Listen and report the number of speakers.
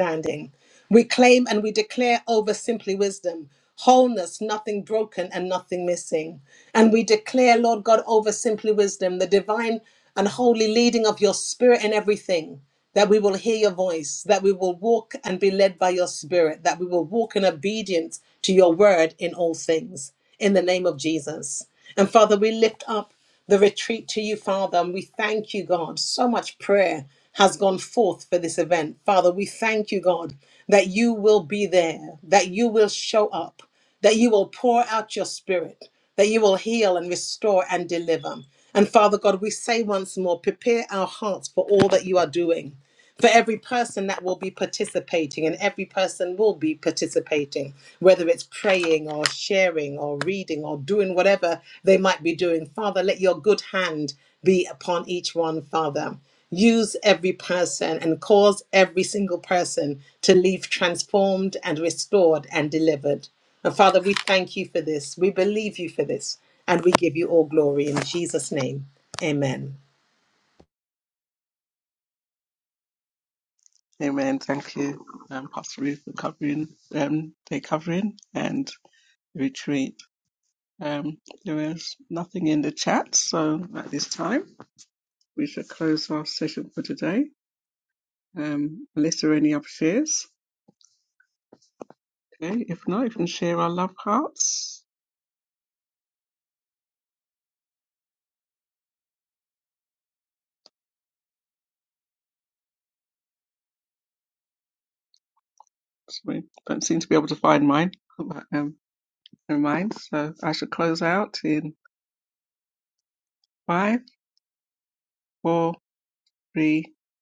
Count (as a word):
two